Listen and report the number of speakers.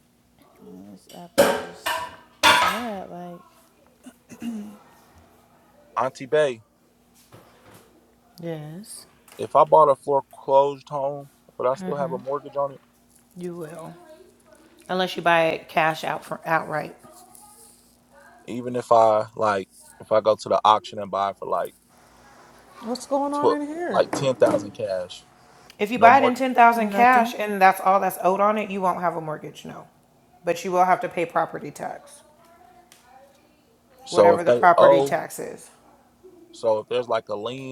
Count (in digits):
4